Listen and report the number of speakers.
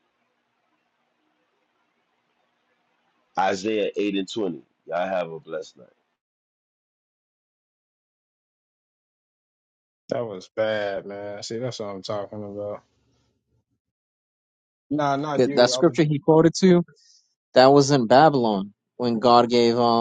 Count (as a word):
three